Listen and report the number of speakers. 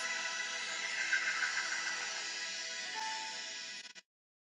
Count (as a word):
zero